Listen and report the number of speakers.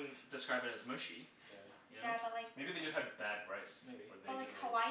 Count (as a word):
three